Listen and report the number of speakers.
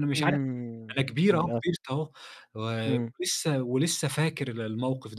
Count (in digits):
2